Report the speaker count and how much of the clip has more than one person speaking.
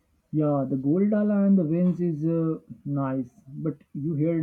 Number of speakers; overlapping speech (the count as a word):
one, no overlap